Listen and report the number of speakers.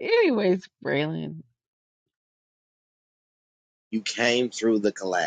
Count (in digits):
2